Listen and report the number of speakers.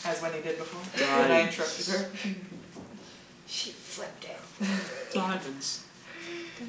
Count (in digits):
3